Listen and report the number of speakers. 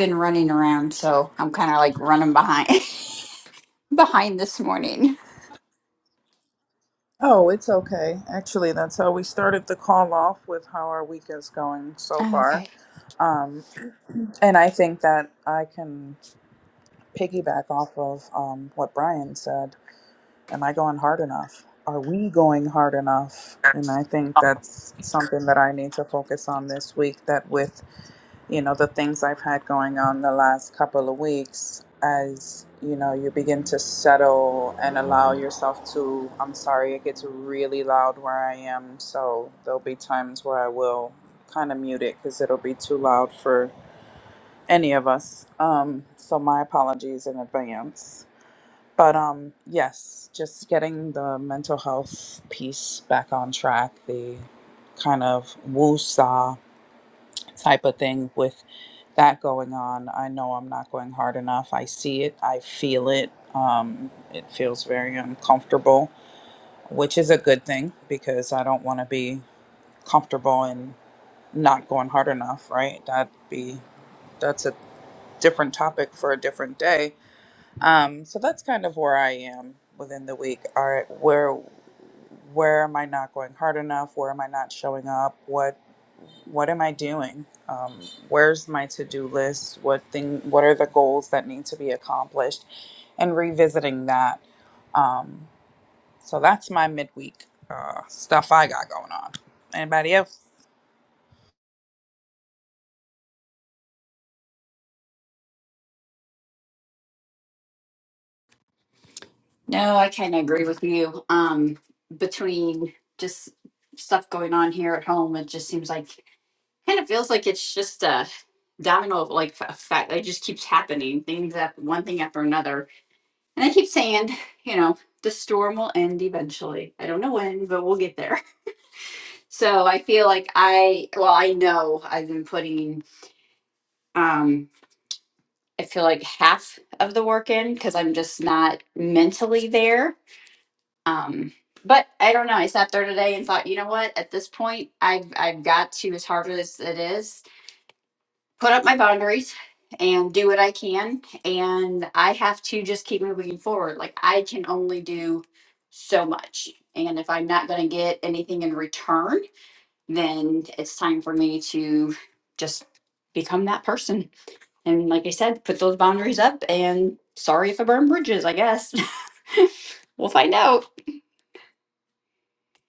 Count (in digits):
2